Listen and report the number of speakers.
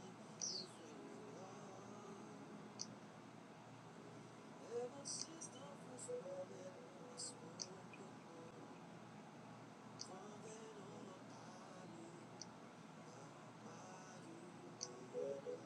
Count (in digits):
0